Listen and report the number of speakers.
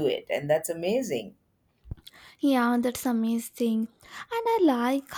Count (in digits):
2